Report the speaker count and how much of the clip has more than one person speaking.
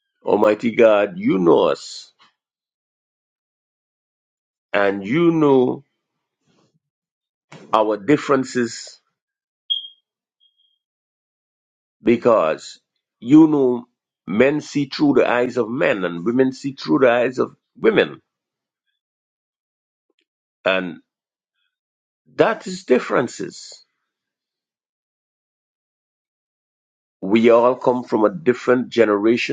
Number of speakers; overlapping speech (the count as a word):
one, no overlap